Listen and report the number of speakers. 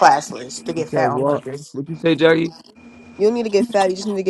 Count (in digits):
3